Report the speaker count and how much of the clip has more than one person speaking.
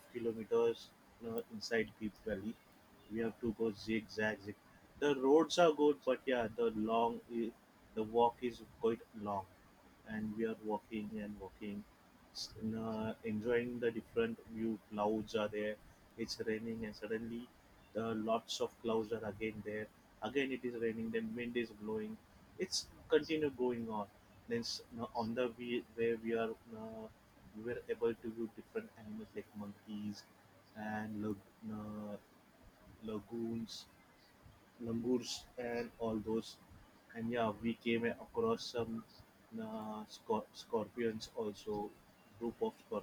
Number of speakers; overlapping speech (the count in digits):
1, no overlap